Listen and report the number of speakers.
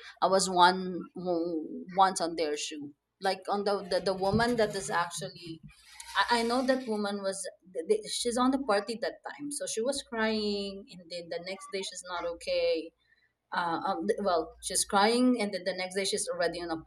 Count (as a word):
one